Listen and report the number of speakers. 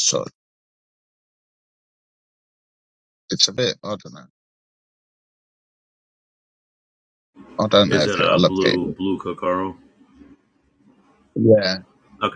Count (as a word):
two